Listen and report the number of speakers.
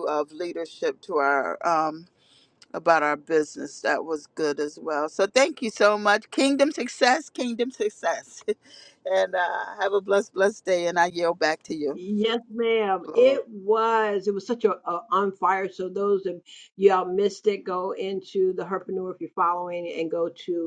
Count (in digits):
2